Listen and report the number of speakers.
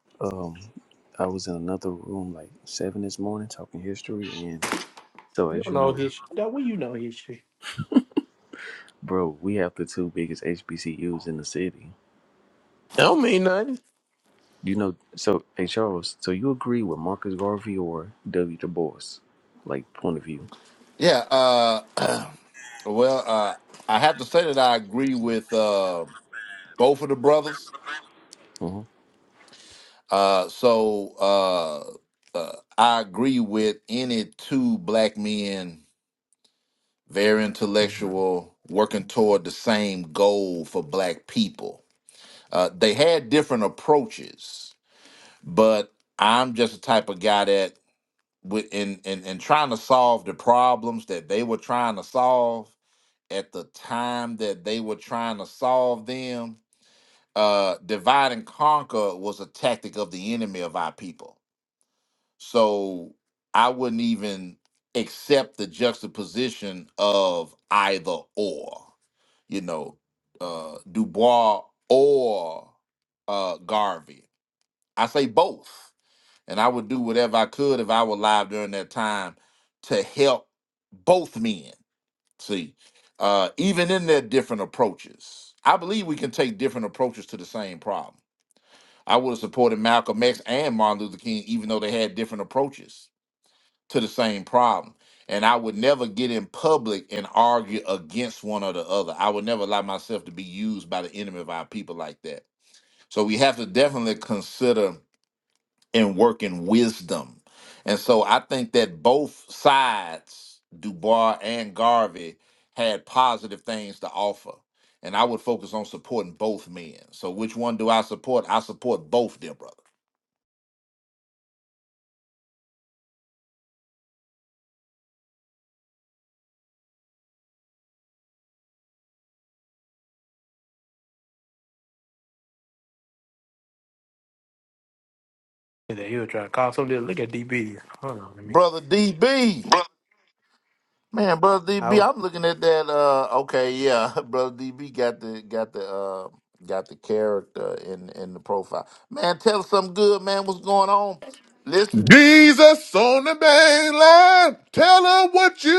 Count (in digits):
4